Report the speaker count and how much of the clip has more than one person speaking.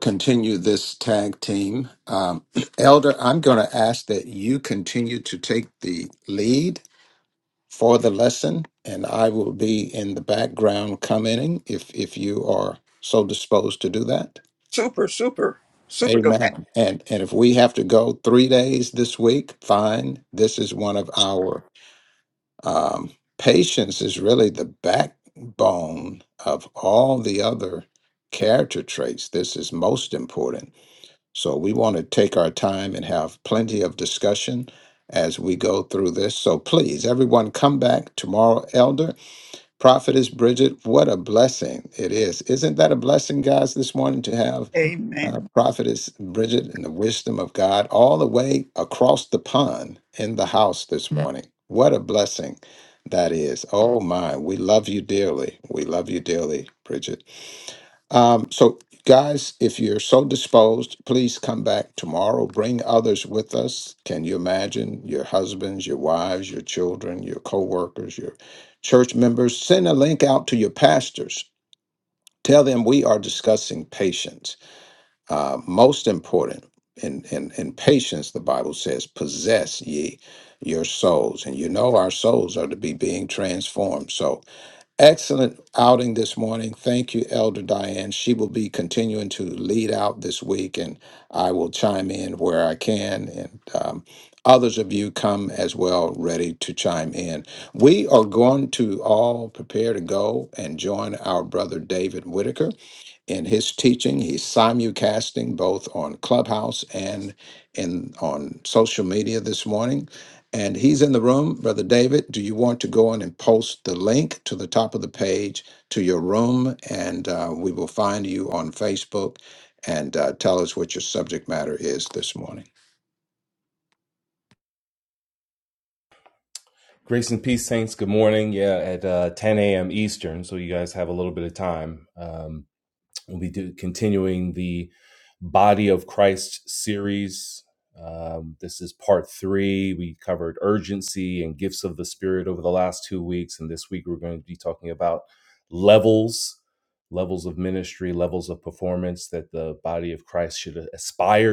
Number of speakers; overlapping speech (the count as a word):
three, under 1%